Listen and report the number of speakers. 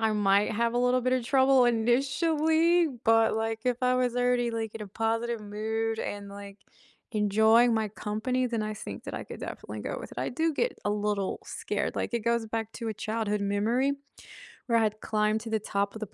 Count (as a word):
one